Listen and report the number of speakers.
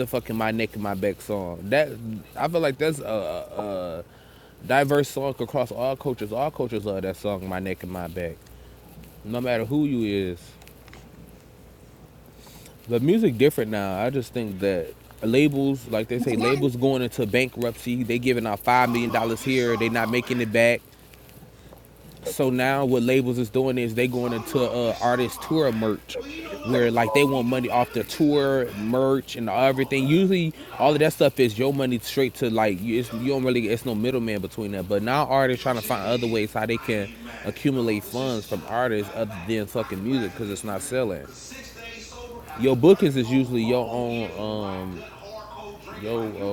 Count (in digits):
2